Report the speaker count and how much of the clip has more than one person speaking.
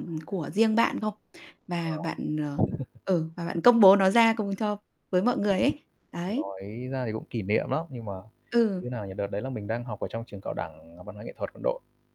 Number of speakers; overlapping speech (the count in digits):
2, about 5%